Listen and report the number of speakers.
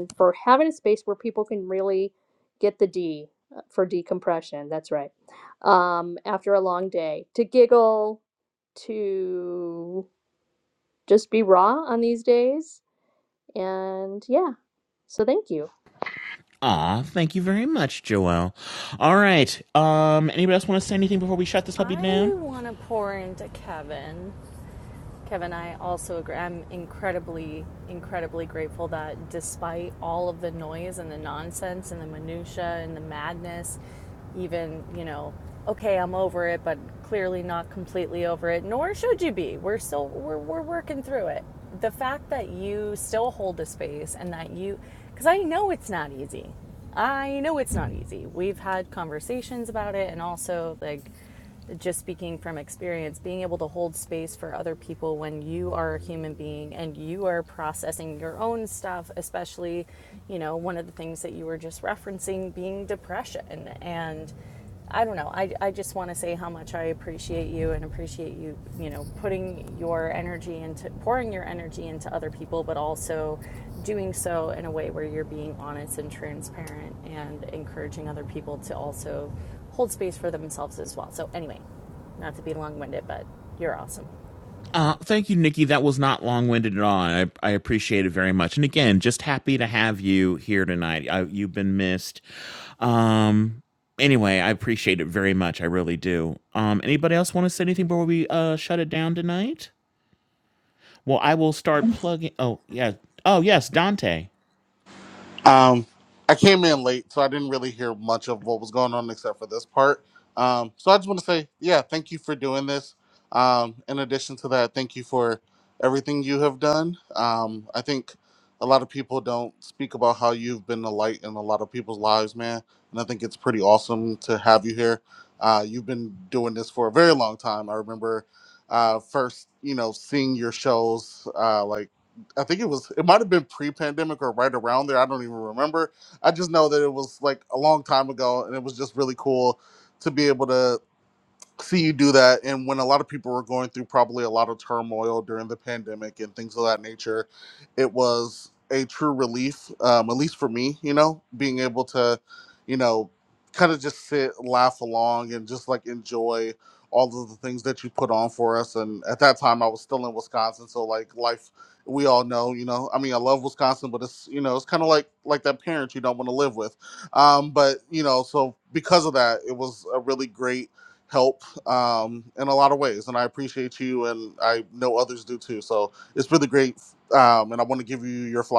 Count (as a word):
four